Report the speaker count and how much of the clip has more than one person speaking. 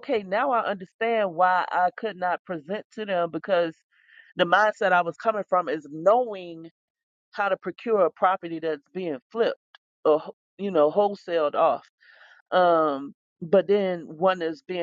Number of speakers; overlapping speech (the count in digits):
1, no overlap